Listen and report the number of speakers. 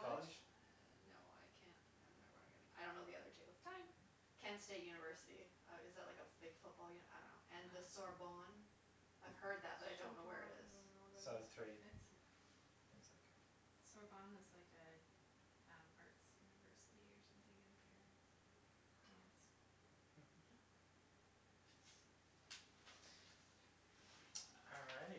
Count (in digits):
4